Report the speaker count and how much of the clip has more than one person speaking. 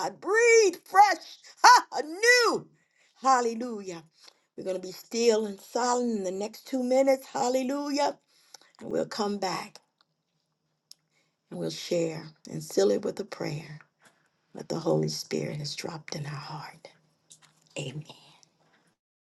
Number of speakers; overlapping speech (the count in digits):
1, no overlap